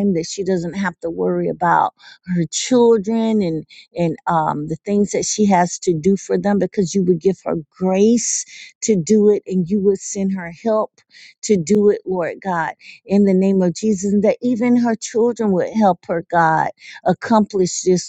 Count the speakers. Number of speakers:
1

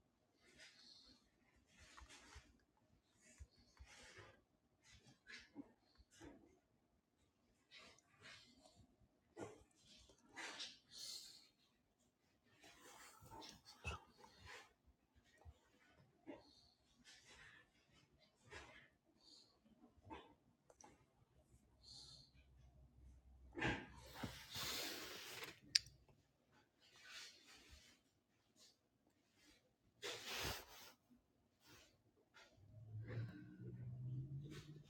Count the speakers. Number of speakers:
0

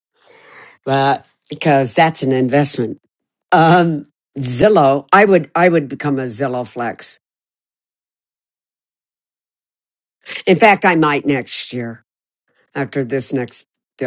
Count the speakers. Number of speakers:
1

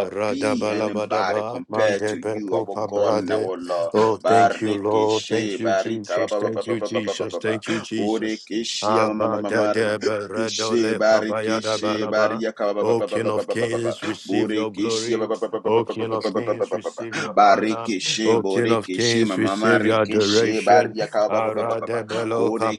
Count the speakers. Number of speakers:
2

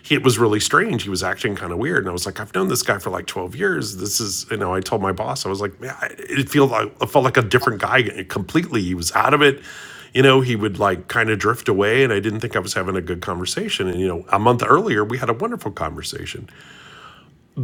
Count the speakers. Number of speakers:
1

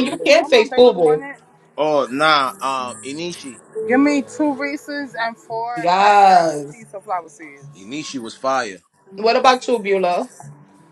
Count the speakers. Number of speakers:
3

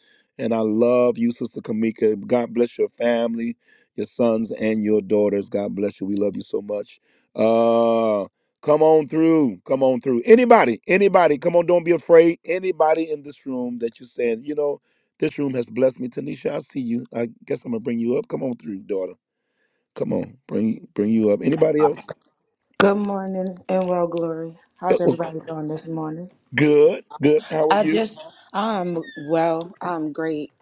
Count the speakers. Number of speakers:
2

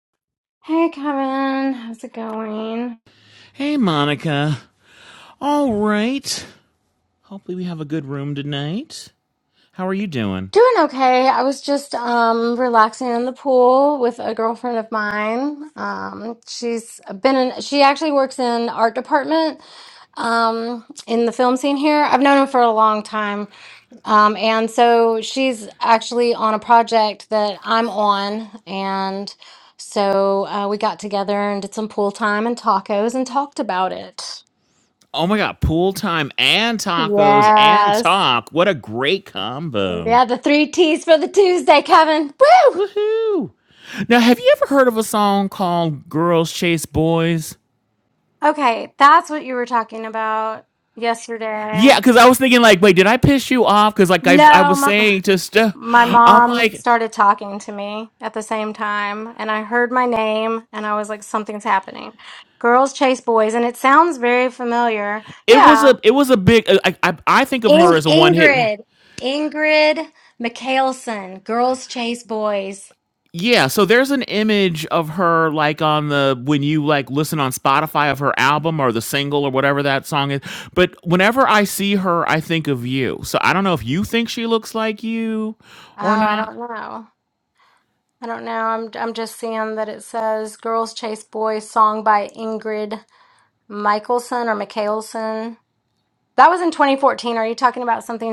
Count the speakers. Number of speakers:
2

